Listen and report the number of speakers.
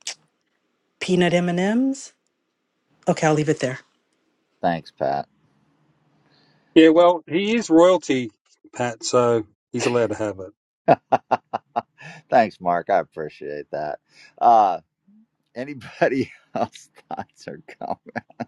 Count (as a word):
three